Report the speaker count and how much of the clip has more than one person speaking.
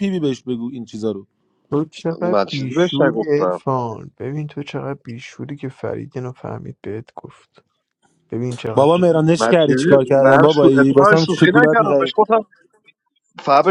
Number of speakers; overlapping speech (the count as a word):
three, about 33%